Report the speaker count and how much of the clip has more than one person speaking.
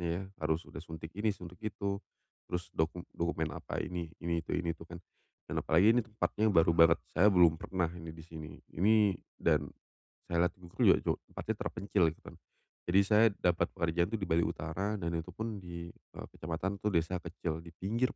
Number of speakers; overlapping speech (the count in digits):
1, no overlap